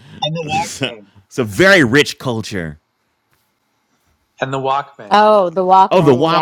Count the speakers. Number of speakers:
three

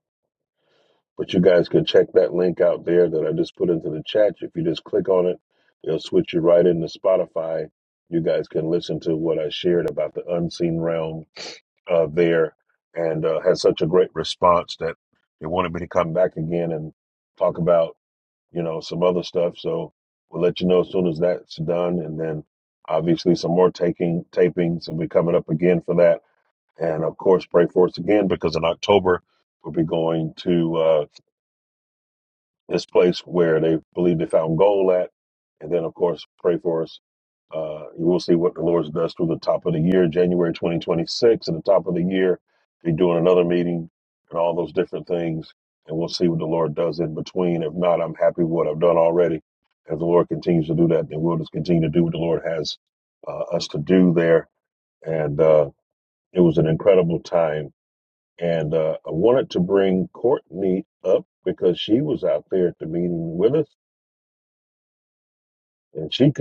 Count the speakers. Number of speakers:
one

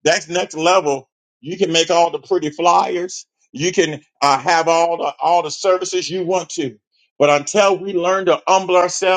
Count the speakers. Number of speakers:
one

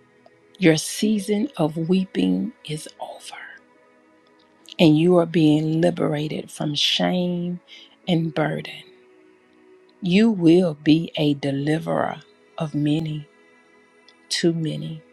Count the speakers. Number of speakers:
one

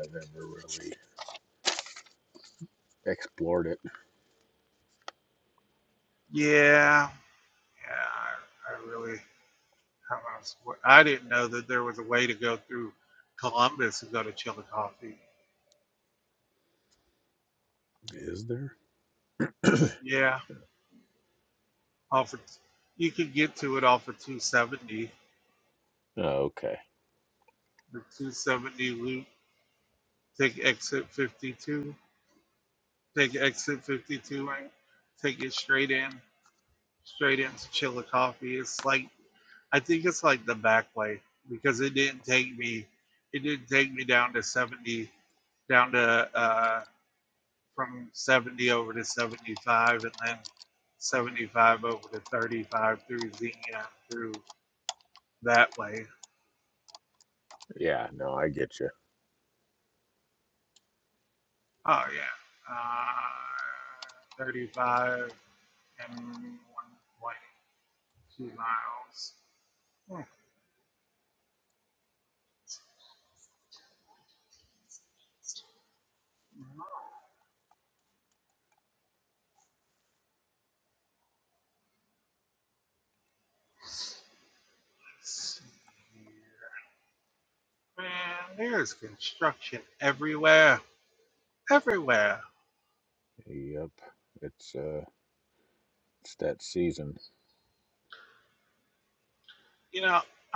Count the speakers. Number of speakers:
two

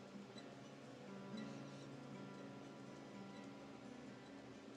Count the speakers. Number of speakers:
zero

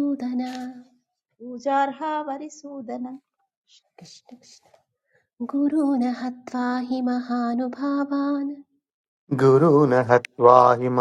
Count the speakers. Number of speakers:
three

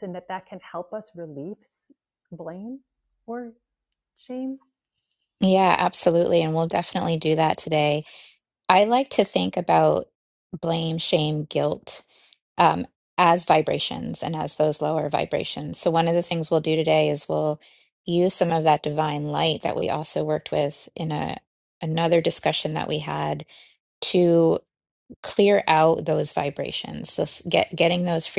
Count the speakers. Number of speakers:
two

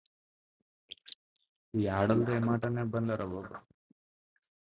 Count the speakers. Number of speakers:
one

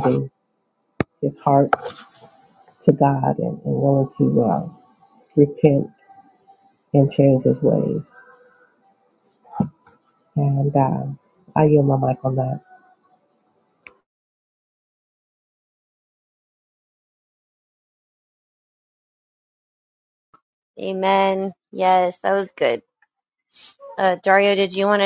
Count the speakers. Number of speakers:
two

